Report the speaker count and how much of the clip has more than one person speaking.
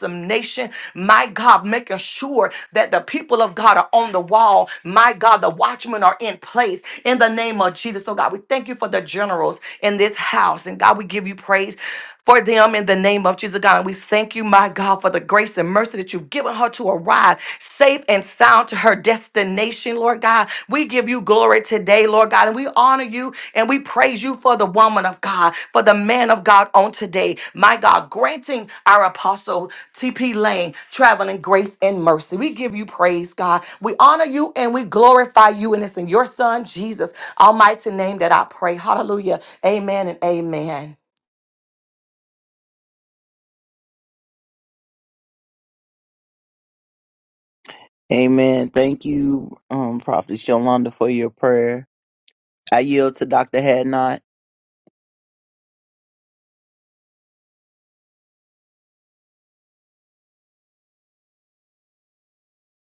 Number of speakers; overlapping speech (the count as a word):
two, no overlap